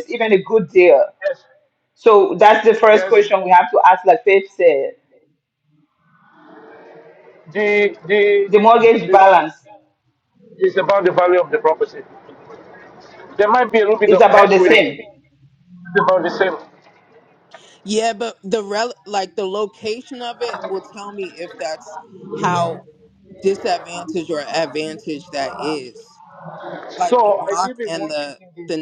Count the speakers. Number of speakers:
3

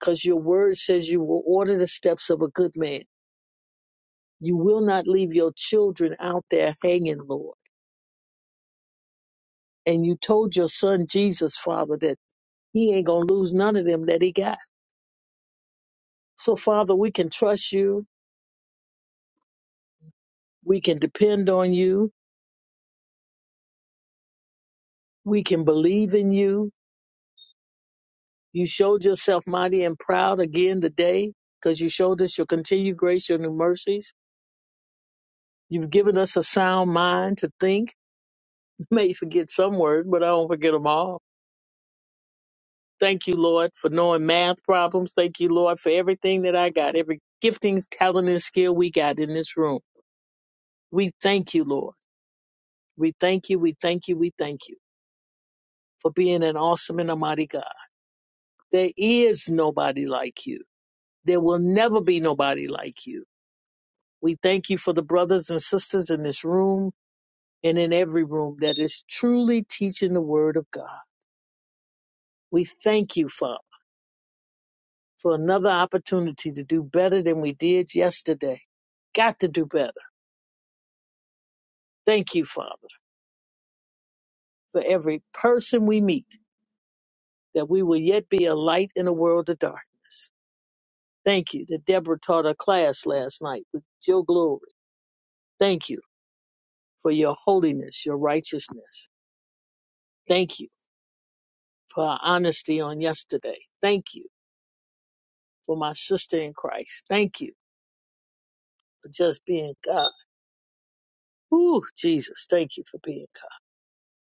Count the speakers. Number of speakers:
1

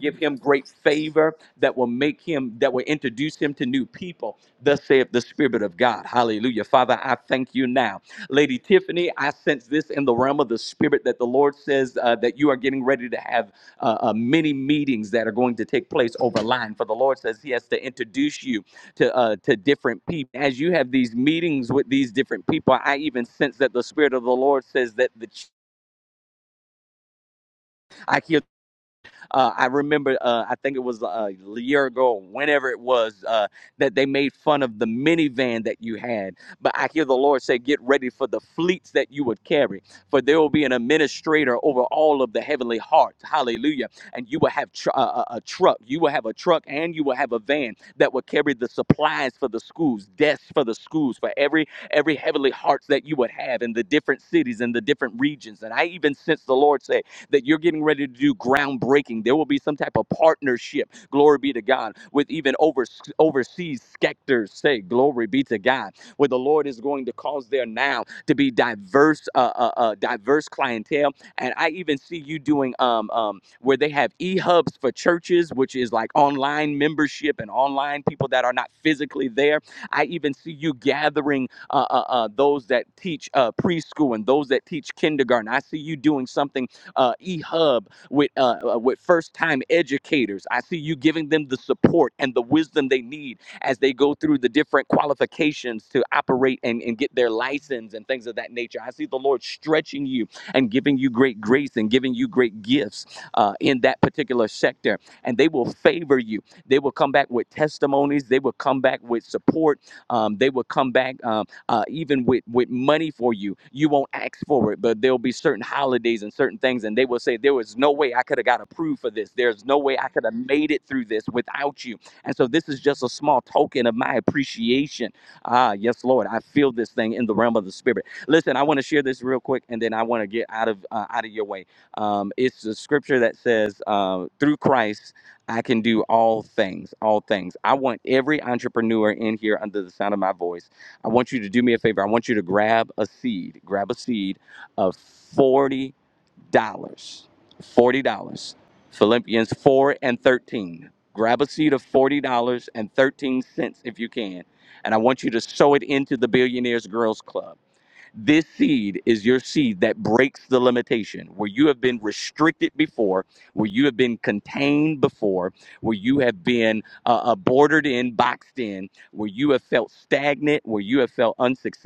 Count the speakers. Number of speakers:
1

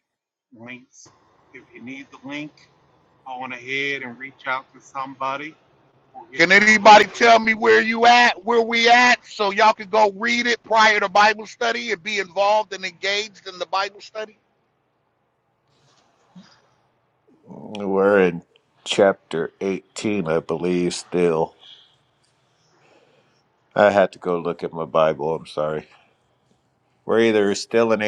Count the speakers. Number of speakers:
3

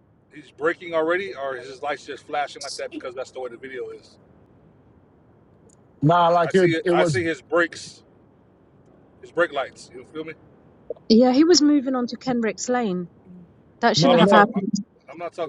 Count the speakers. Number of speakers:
3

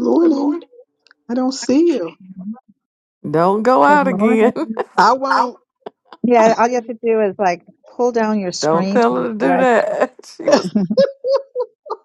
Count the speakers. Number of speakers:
3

